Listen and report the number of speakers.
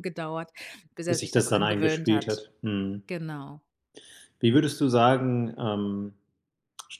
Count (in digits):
2